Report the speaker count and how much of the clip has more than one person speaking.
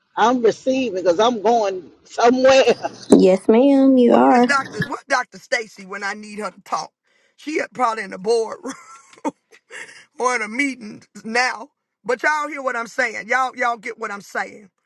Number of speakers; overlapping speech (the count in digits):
3, about 2%